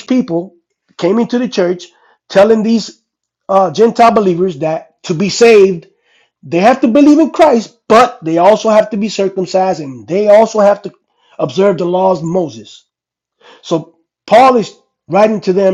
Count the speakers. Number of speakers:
one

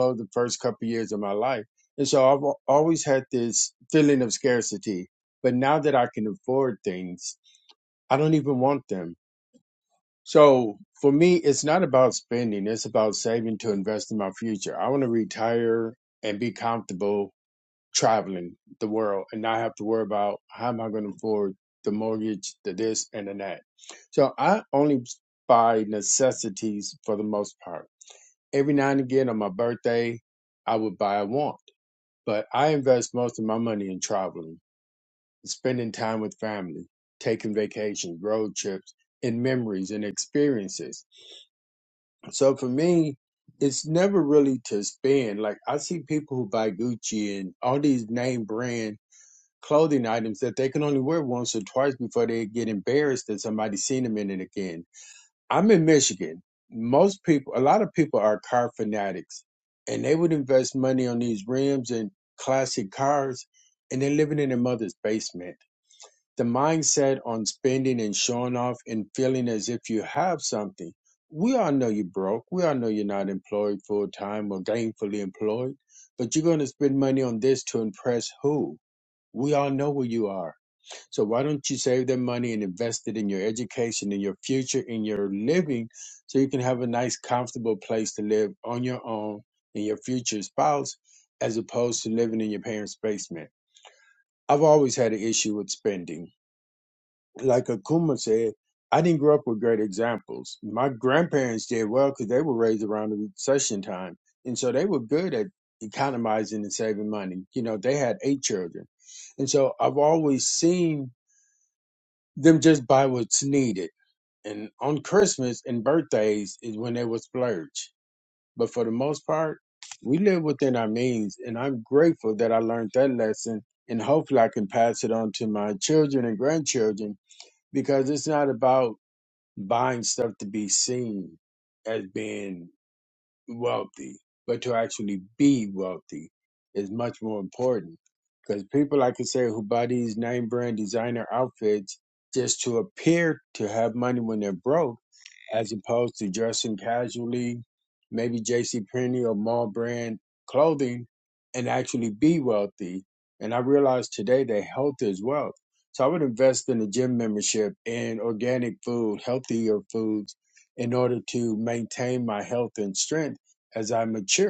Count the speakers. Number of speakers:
one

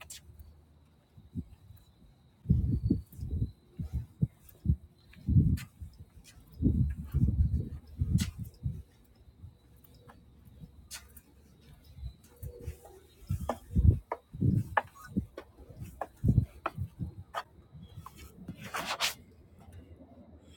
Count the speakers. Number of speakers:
zero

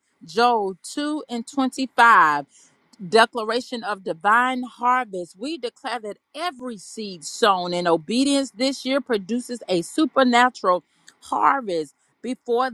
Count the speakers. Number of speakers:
one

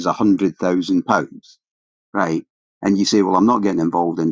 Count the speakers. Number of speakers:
one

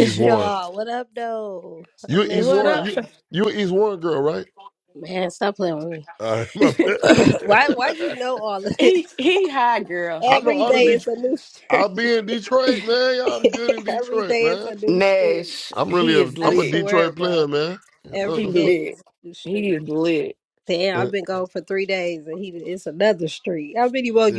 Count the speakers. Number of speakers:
three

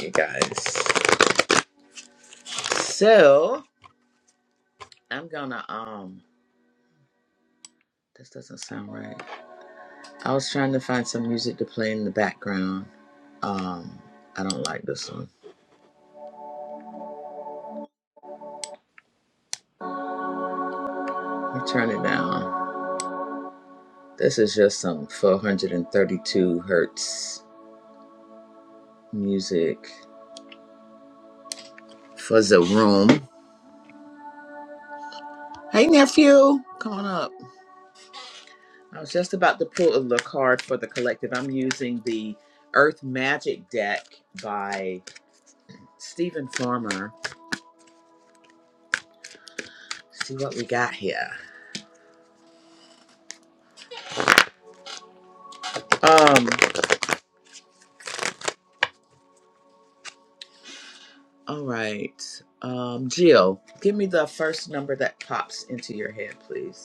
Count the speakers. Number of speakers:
one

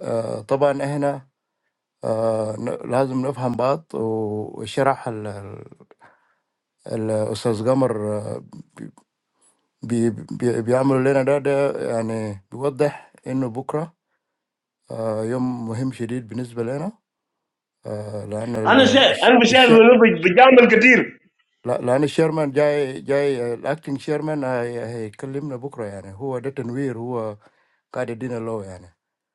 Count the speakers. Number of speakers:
two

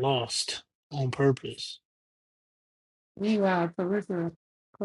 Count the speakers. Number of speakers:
two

